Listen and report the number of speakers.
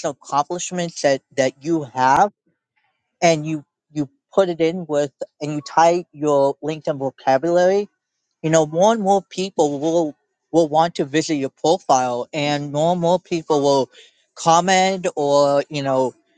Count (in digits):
1